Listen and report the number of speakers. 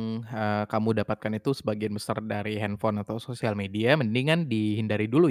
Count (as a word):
one